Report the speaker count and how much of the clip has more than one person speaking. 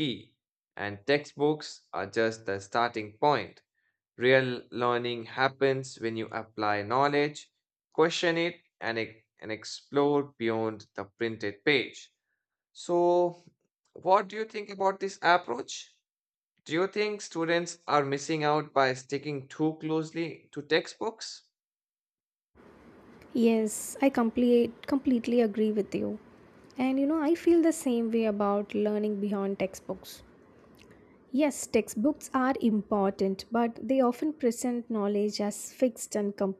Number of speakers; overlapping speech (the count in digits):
2, no overlap